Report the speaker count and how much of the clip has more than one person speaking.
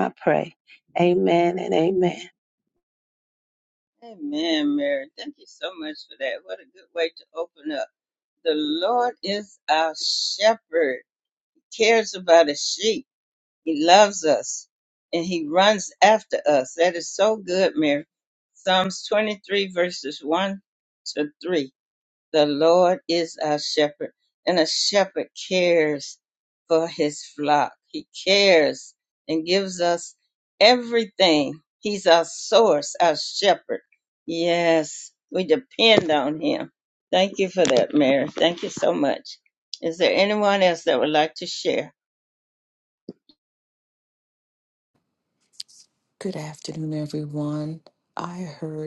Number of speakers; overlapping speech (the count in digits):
3, no overlap